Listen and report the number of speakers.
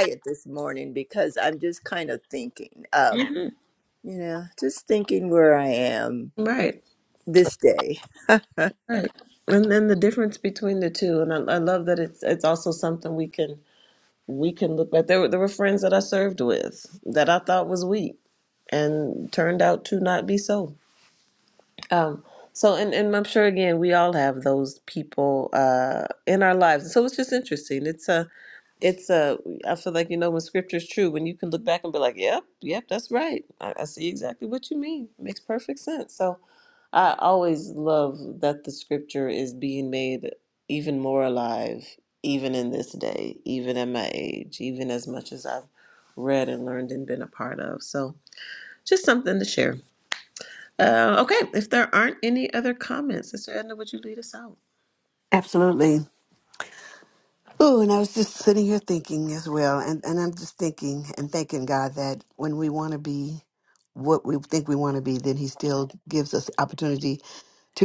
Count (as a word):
three